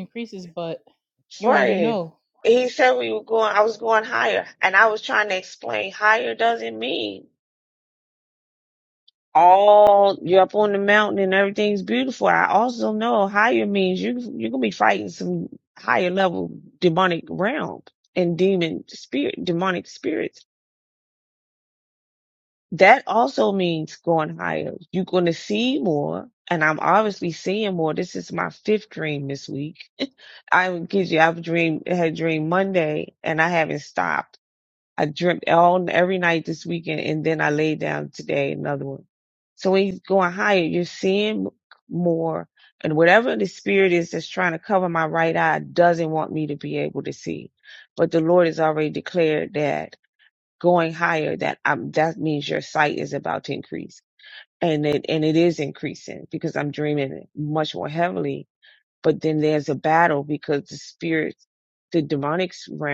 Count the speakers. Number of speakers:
2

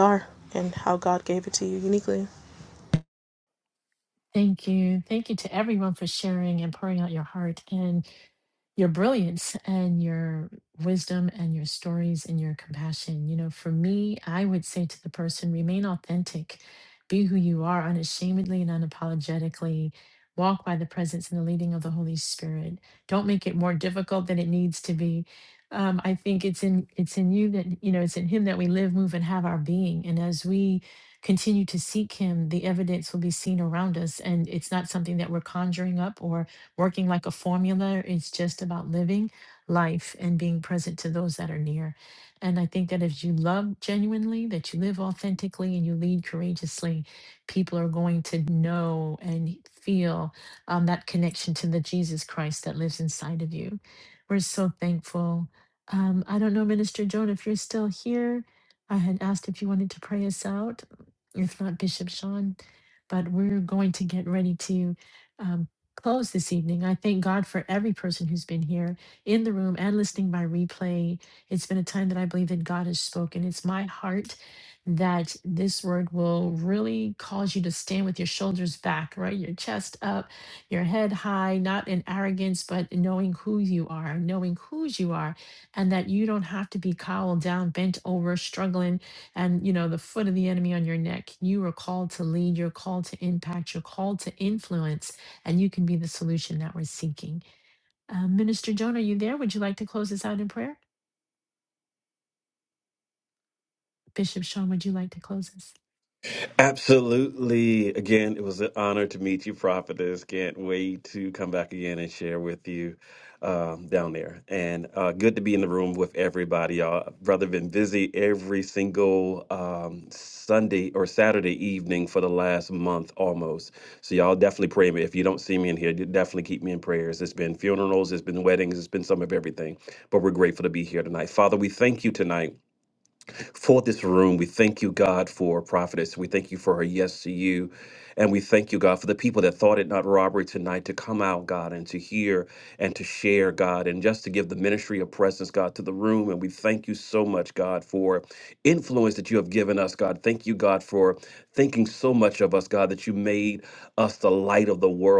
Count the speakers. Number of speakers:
3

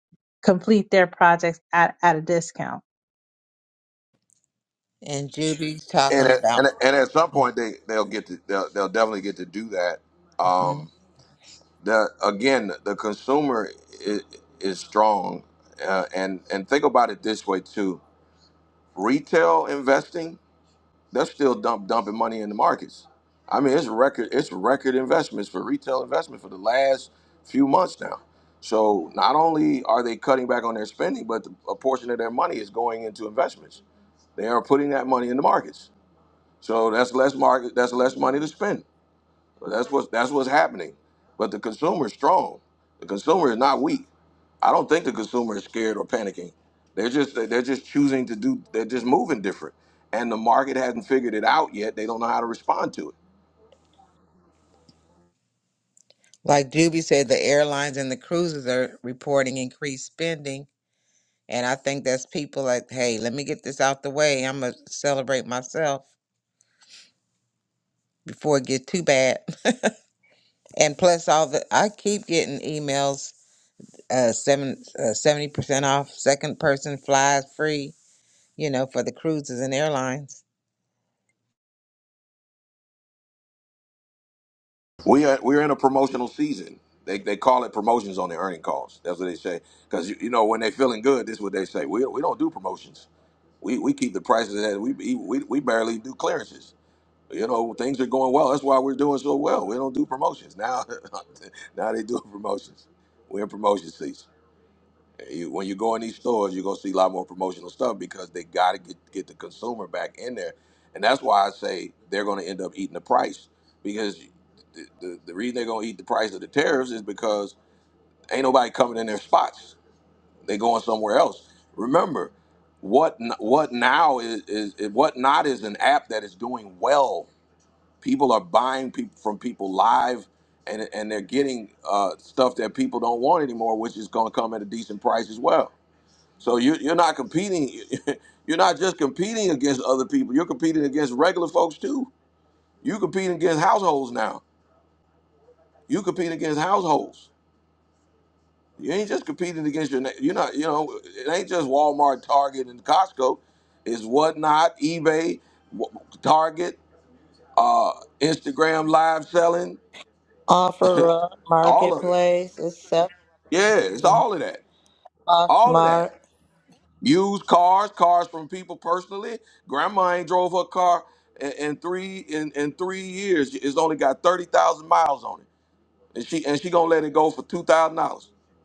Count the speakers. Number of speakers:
4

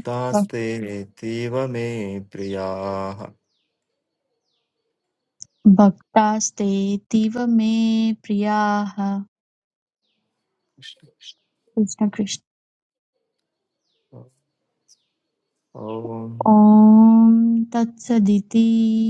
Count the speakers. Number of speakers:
2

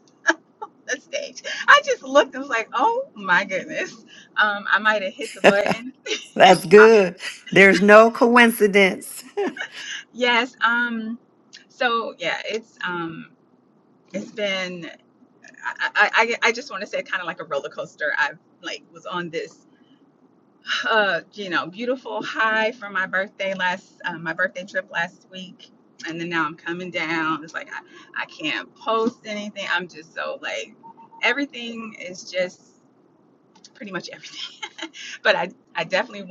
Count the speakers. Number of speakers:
2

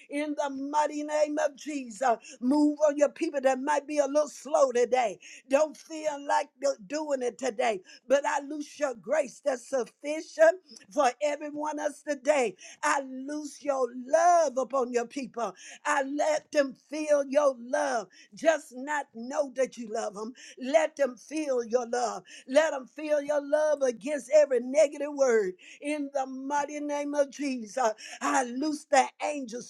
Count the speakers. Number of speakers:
1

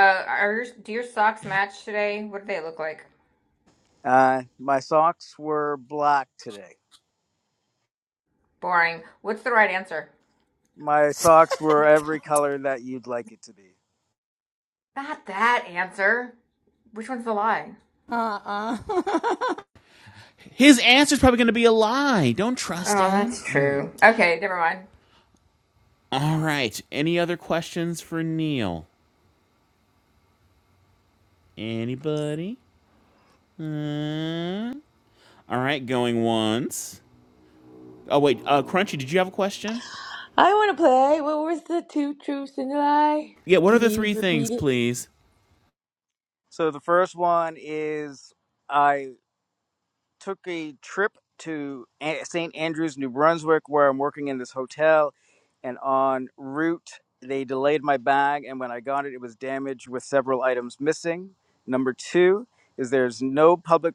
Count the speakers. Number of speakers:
5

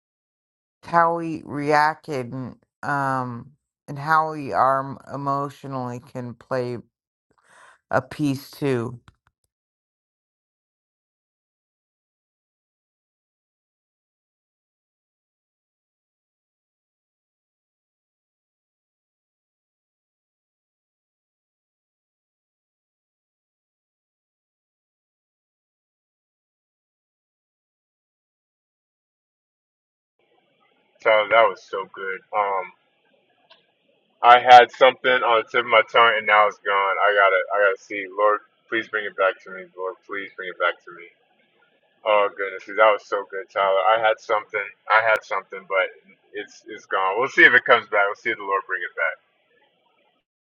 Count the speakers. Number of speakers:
2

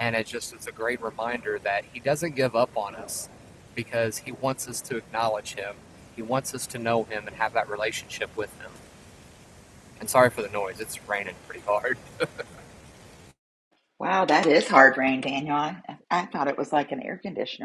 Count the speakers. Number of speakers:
2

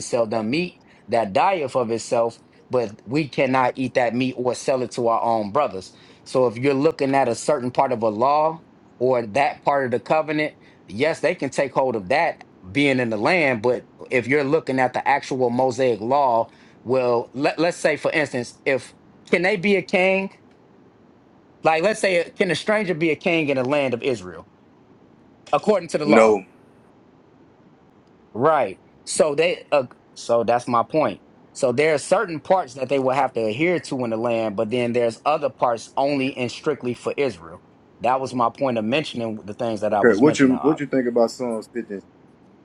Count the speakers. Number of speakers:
2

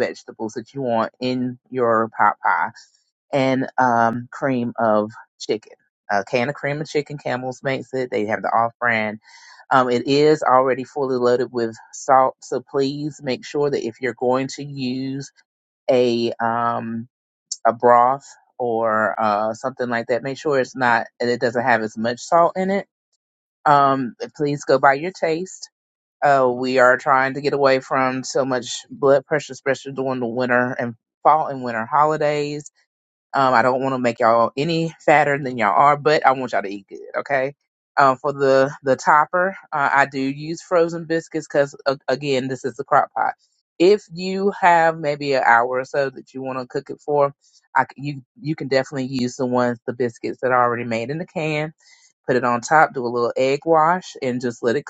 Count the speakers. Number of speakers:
1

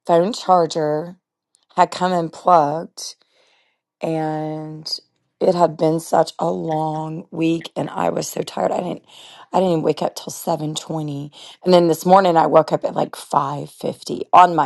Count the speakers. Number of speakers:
1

